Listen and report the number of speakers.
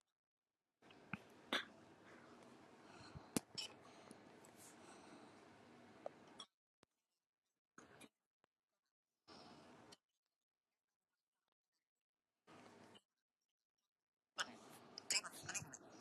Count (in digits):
0